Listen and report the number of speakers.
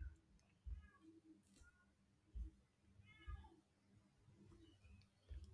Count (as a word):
zero